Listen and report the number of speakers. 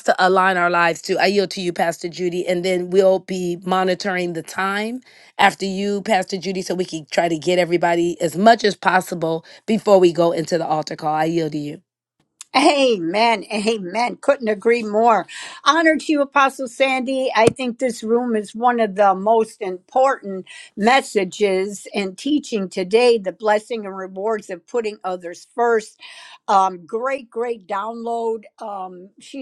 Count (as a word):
two